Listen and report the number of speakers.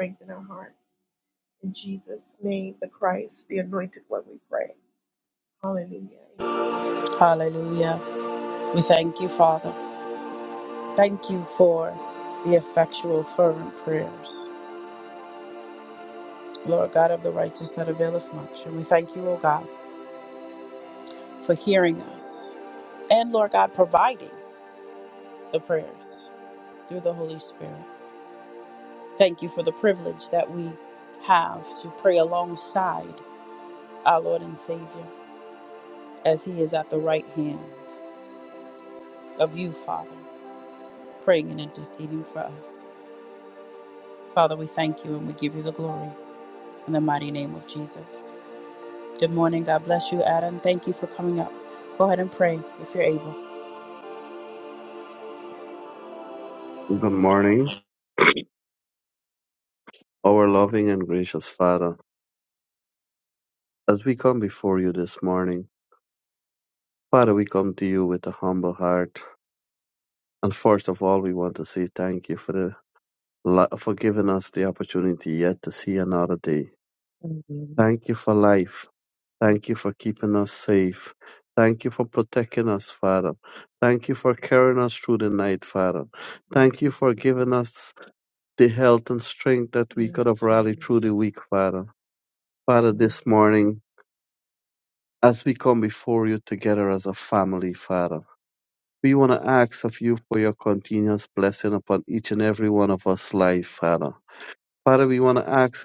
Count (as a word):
three